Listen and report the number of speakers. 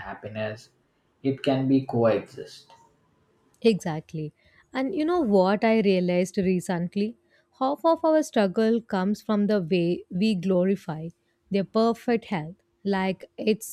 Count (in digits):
2